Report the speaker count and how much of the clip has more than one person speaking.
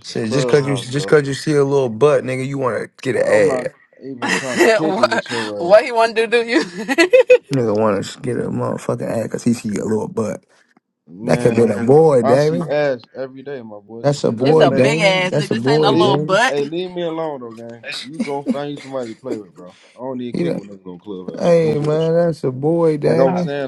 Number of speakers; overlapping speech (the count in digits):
3, about 33%